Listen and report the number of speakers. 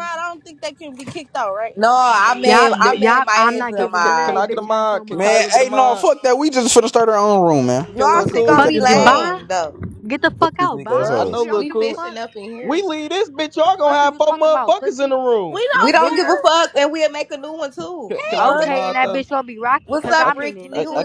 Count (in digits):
5